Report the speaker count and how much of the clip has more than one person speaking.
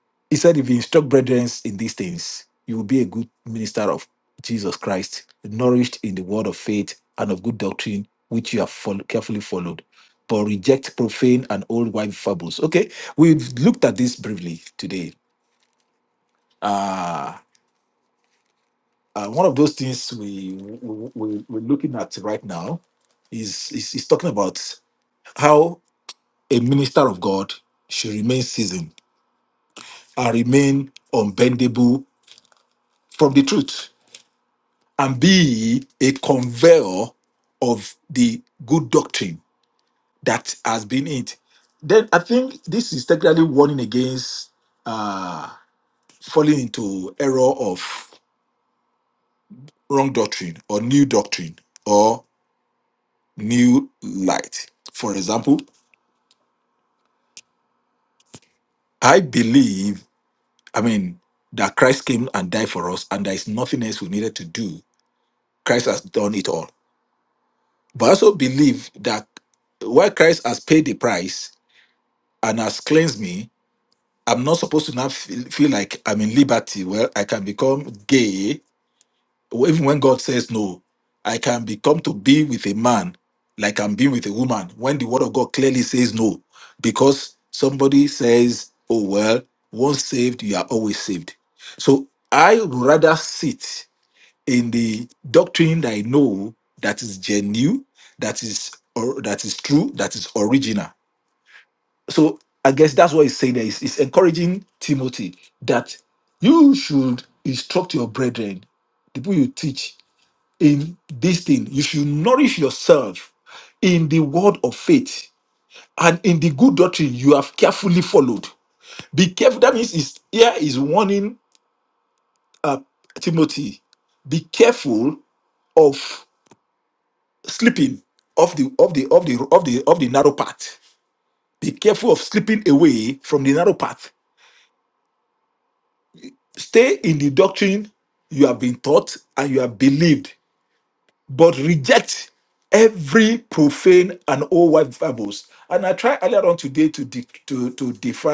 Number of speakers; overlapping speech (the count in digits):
1, no overlap